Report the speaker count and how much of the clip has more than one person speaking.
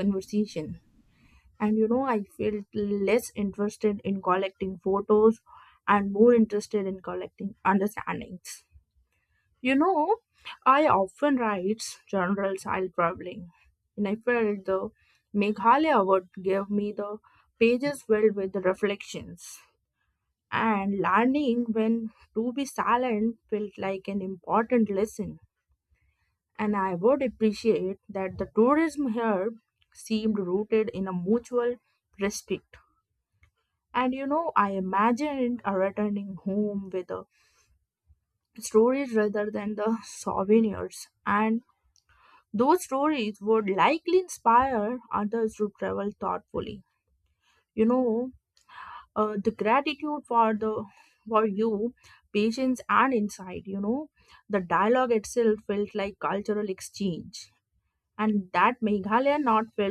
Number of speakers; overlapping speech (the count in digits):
1, no overlap